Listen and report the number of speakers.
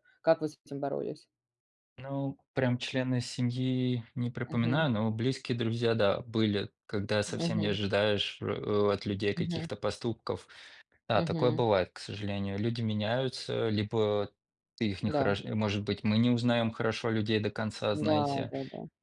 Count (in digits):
2